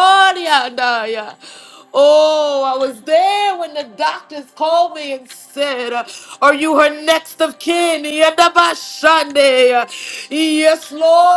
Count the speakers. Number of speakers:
1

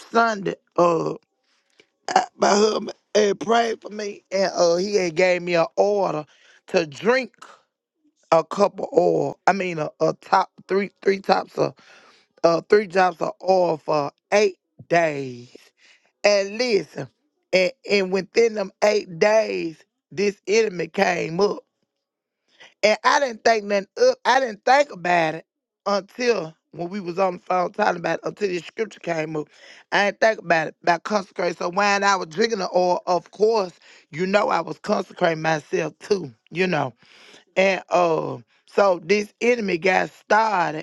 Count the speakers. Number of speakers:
1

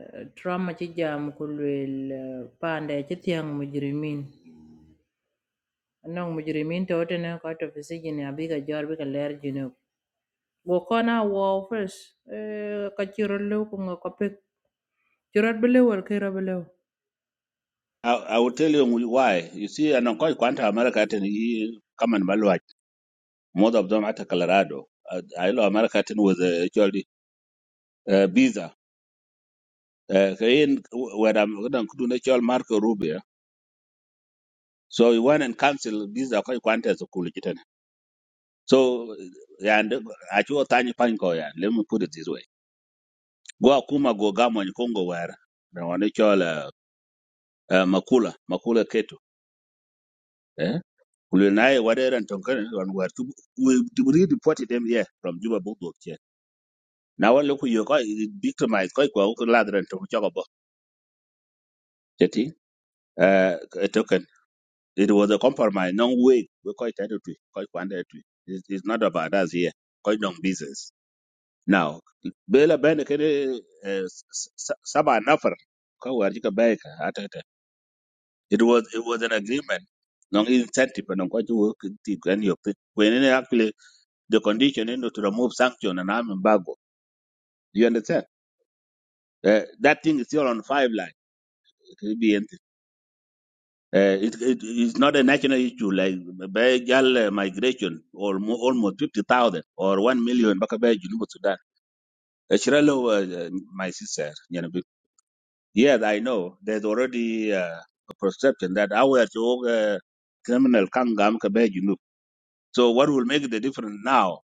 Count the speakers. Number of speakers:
2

